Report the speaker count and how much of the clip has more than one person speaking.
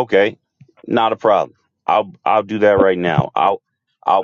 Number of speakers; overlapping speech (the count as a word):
one, no overlap